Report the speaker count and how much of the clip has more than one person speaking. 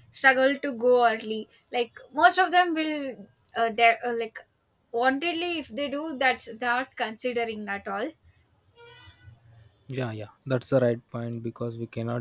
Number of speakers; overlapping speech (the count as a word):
two, no overlap